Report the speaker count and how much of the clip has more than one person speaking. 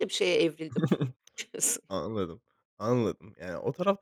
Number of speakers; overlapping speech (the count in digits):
2, no overlap